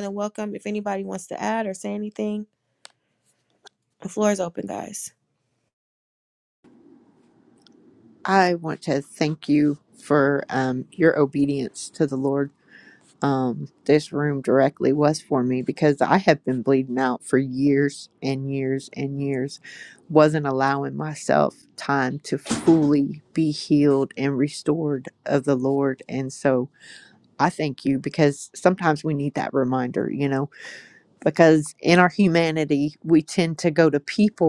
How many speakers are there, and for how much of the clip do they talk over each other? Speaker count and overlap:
2, no overlap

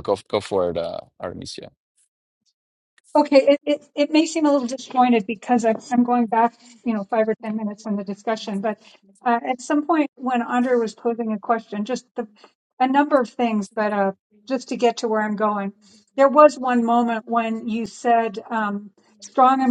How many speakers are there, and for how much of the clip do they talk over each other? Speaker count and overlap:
2, no overlap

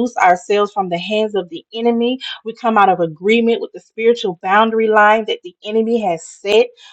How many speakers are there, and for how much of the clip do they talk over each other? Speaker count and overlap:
1, no overlap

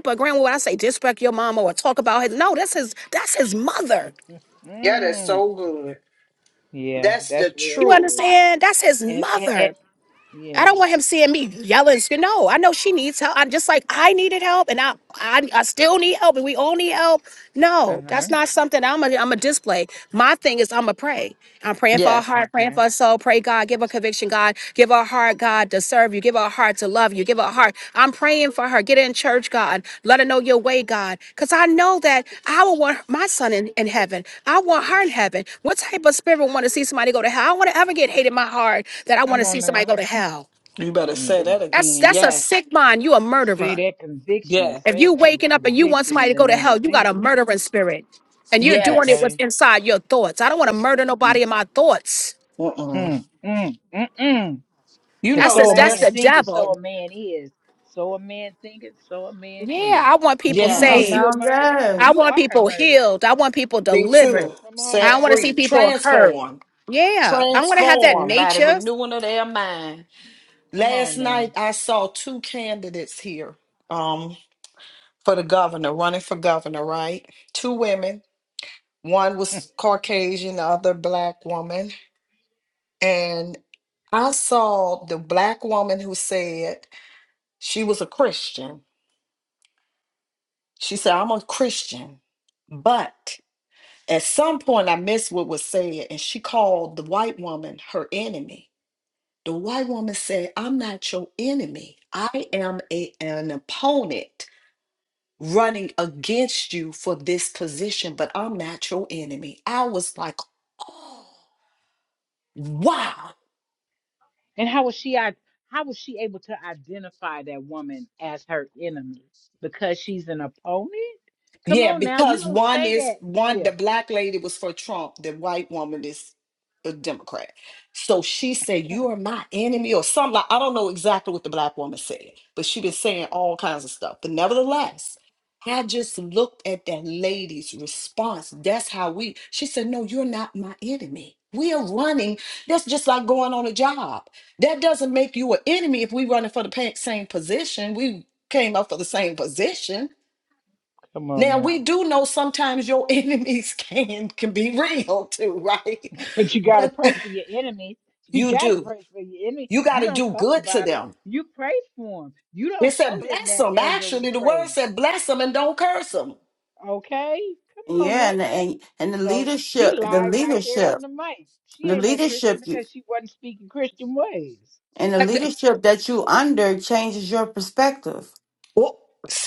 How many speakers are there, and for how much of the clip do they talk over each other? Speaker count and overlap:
4, about 16%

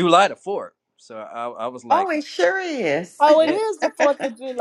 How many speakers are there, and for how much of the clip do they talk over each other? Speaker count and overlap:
3, about 10%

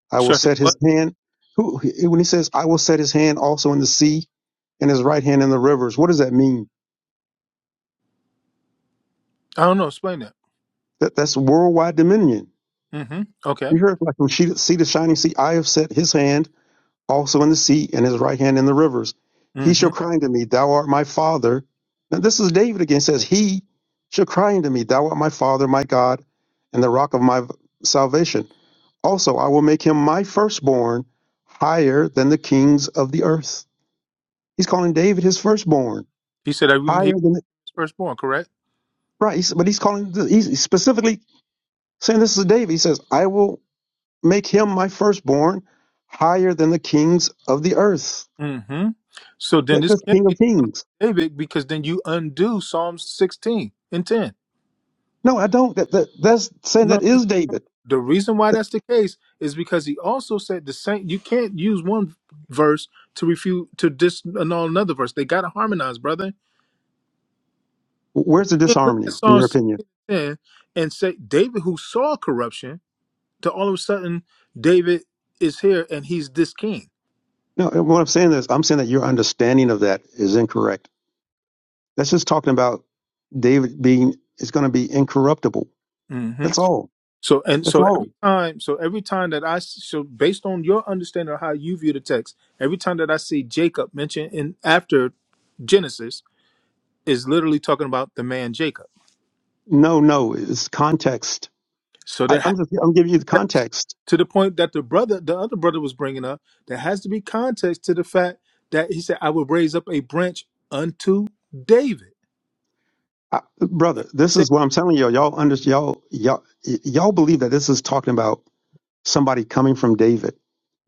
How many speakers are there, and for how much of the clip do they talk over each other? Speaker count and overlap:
2, about 4%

